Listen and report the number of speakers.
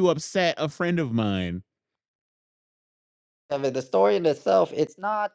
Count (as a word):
two